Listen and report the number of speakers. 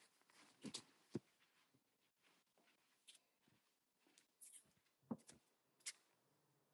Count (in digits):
0